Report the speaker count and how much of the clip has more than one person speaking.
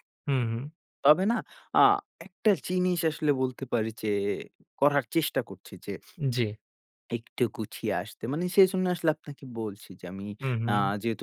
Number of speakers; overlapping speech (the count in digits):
2, about 2%